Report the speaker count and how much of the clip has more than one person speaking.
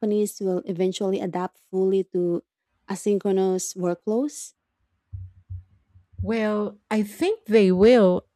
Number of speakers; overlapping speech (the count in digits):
2, no overlap